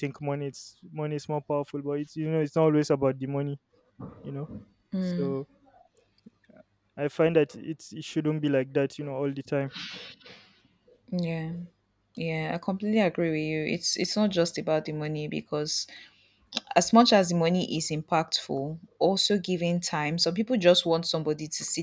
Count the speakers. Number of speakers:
two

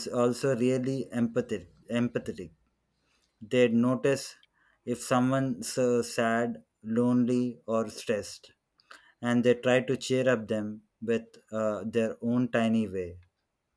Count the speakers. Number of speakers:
one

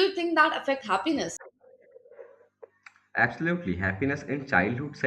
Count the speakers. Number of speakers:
two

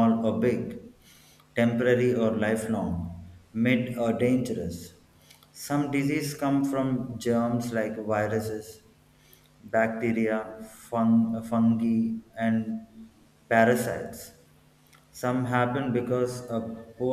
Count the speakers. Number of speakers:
one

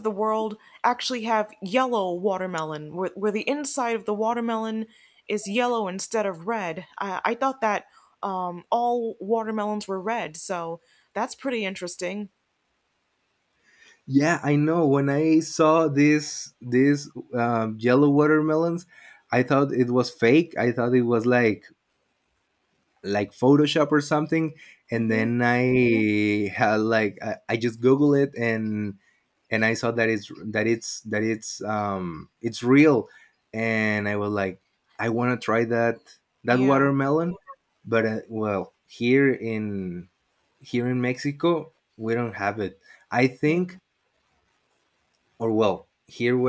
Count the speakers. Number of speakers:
two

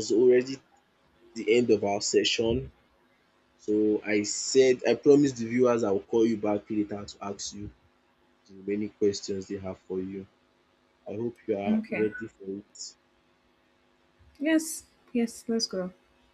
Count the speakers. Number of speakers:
two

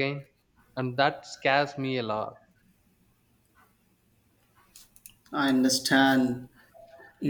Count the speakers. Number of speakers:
two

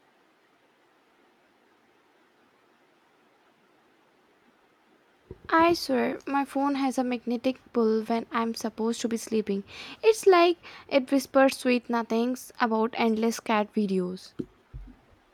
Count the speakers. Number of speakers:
one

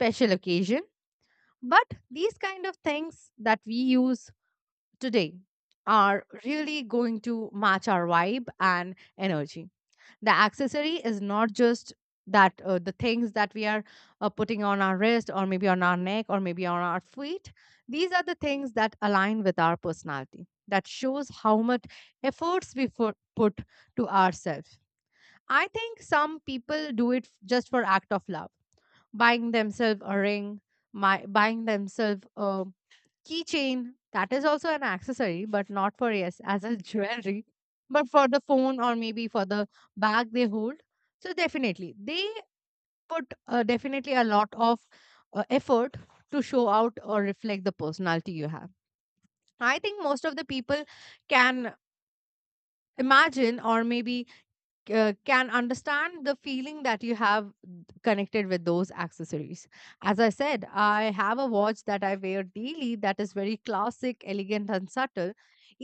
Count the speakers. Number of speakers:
one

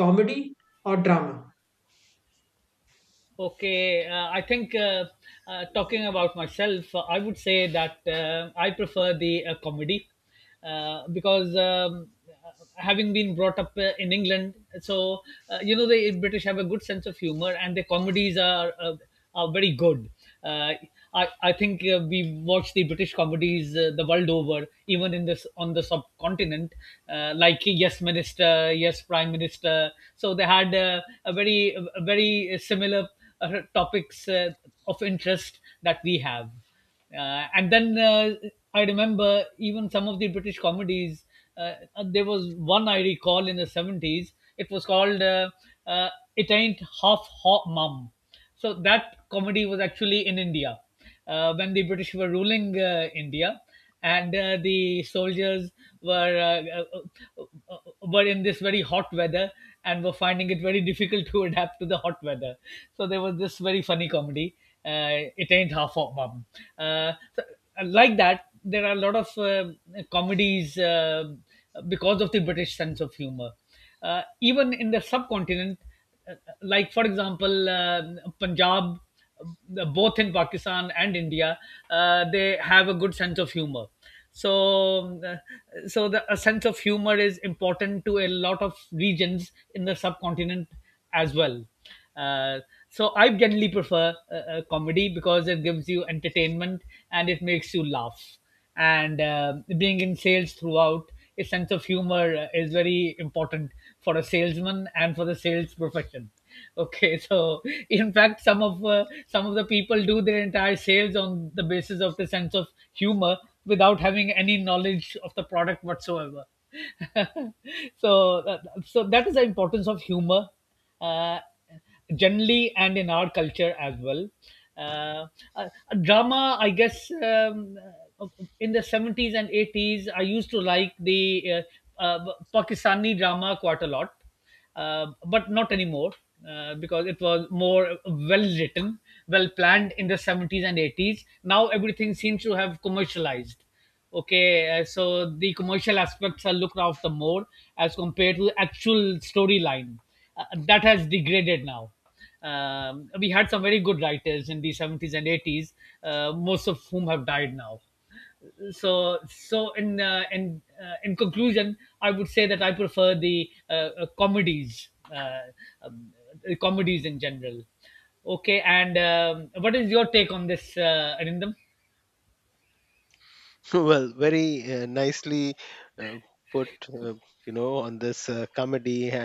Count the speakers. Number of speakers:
three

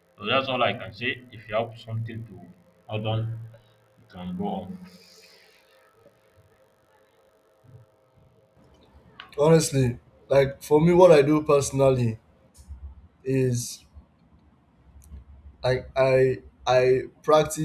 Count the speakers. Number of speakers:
two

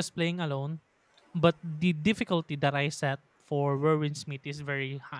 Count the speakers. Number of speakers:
one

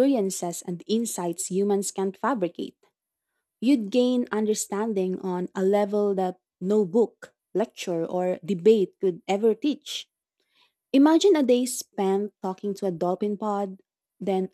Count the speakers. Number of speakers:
one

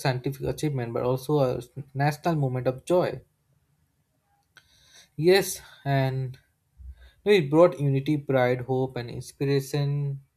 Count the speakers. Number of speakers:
one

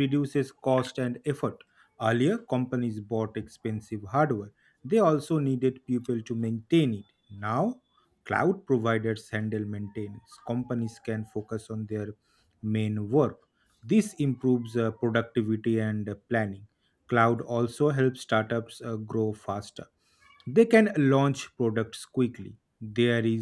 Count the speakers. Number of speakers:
one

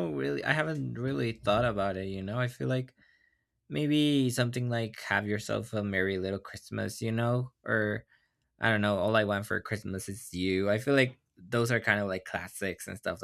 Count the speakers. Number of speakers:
one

